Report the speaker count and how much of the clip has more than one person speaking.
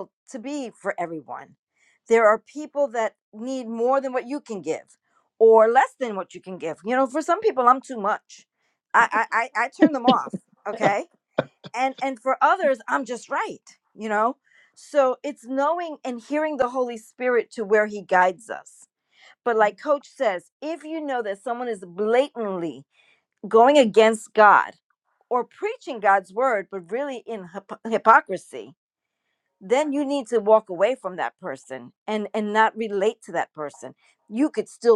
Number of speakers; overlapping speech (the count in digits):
1, no overlap